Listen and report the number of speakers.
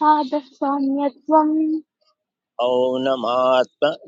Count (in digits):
2